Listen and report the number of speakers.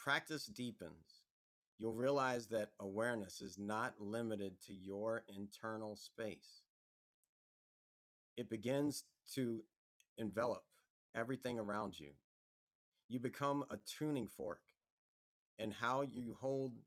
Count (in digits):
1